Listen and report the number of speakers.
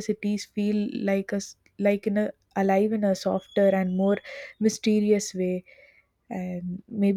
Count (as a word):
one